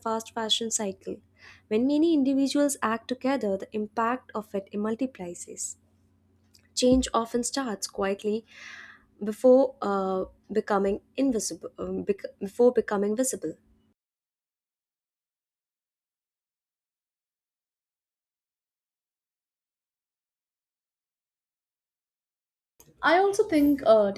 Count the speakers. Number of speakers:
2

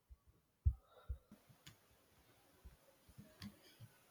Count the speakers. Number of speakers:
0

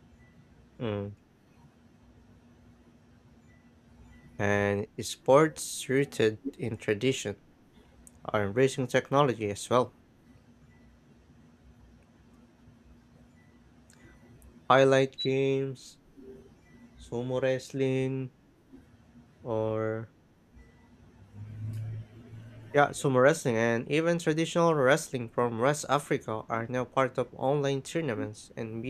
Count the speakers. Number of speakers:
1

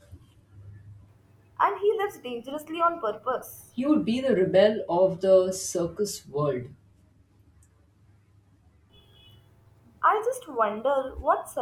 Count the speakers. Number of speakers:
2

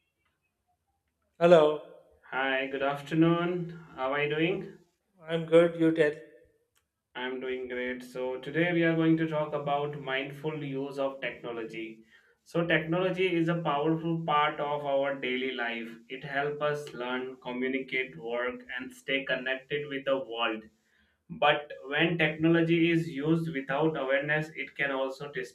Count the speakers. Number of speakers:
2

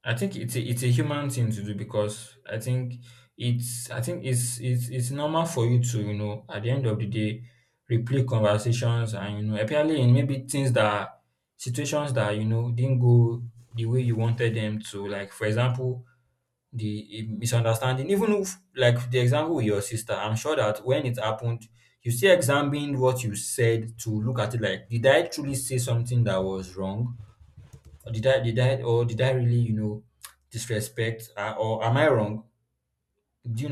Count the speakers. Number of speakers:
1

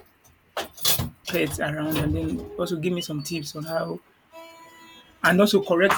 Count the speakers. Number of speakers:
1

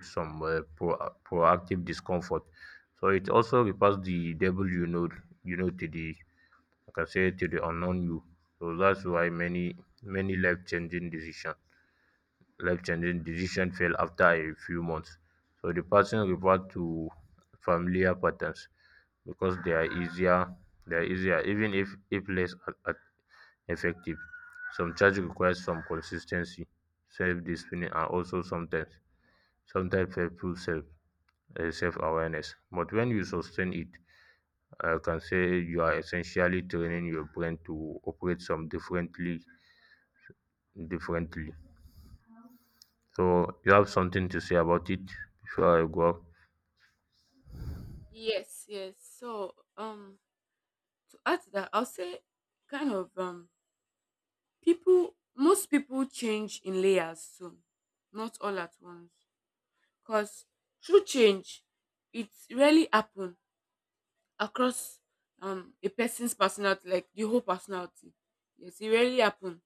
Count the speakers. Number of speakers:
2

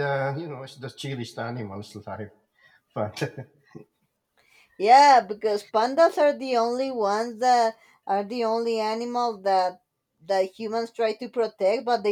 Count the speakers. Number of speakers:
2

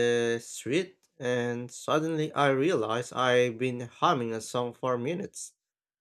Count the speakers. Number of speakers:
1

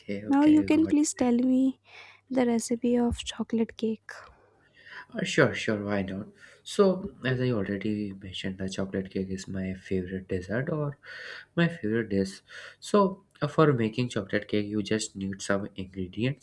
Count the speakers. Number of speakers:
2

